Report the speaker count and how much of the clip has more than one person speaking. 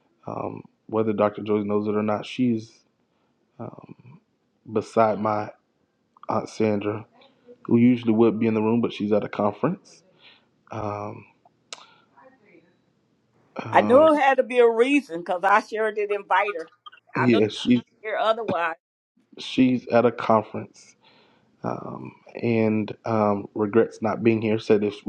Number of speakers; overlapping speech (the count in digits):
2, about 3%